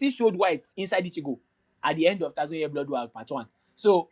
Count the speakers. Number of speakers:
1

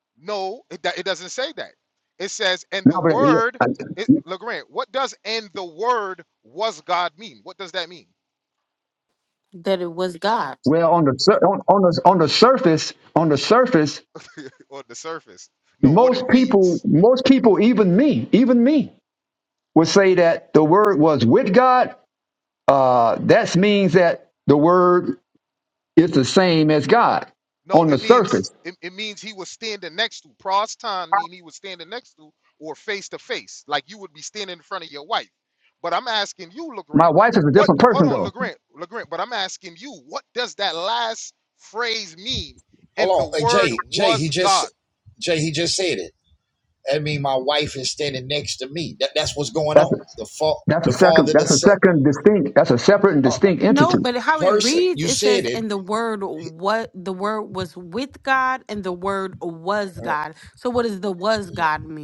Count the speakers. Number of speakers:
4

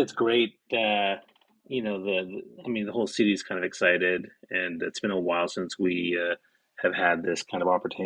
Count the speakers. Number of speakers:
1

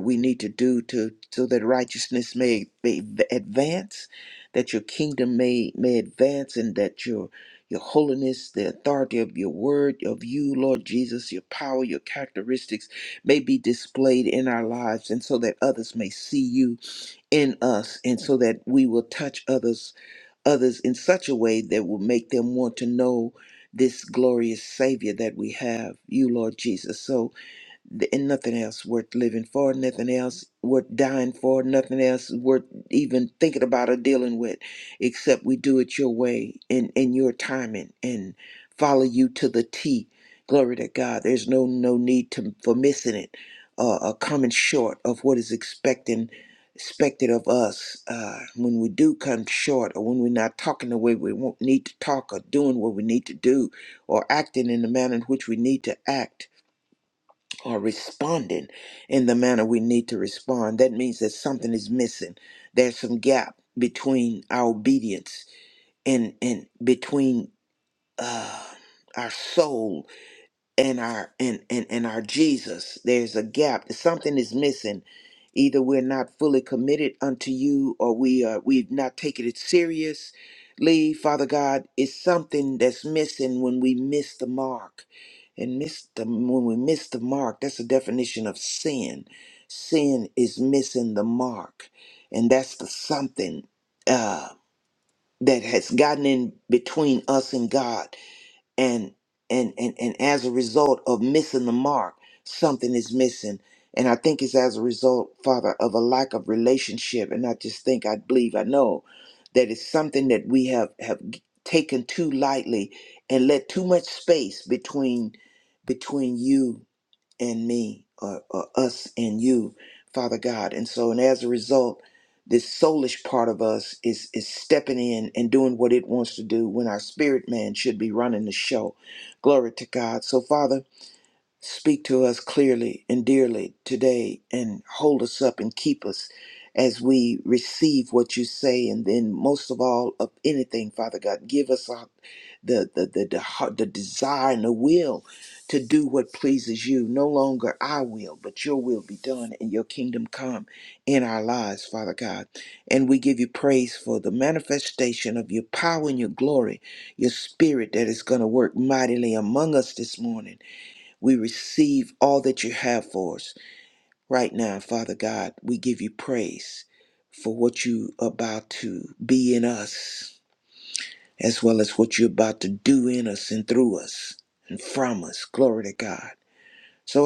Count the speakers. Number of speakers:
1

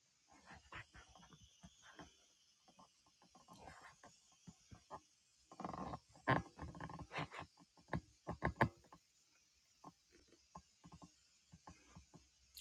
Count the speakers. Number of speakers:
0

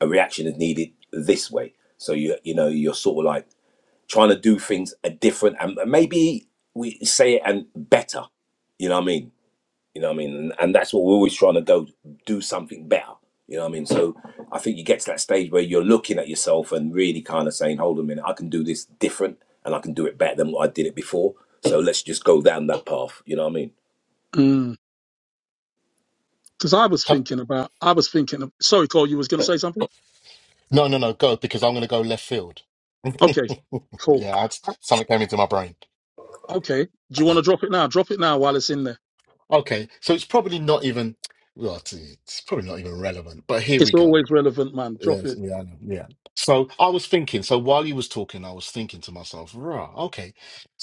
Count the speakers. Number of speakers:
3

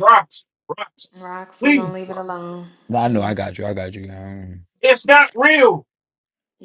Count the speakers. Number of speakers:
3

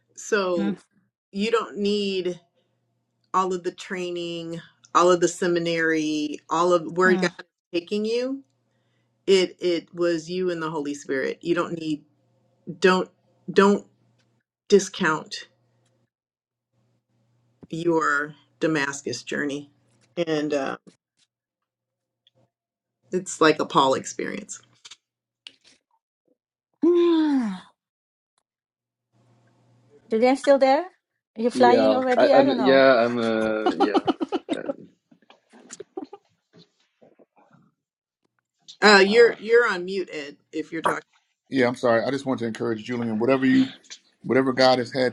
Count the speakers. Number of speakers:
4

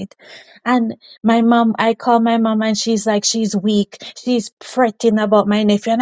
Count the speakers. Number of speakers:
1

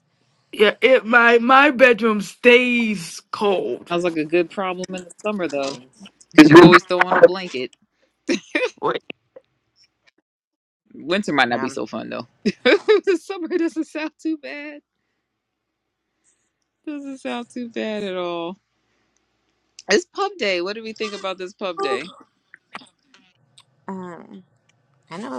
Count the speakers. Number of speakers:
3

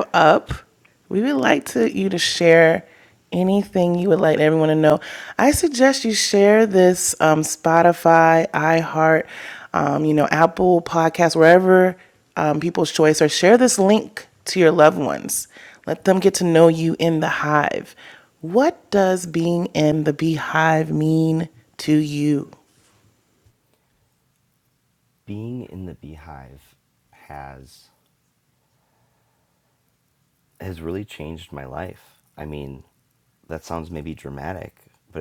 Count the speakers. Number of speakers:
2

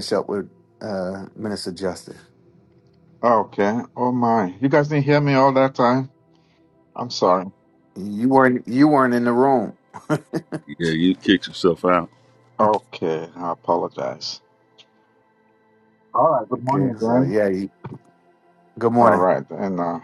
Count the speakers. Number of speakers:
3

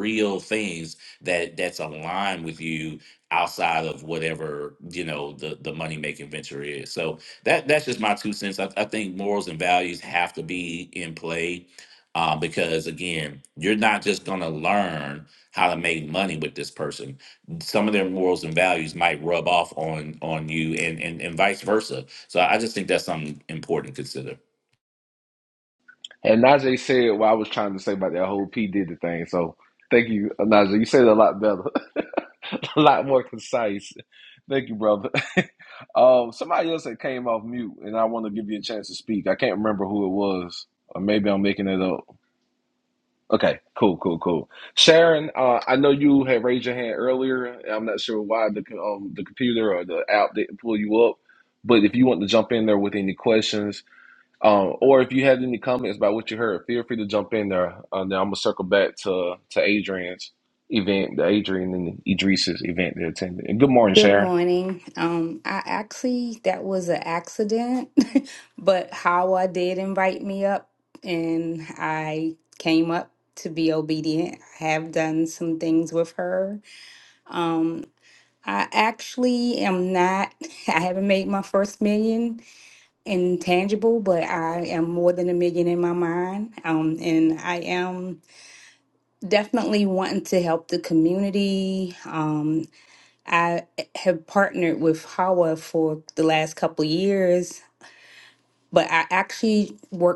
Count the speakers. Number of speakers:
3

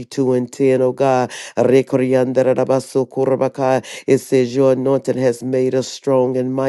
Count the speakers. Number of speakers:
1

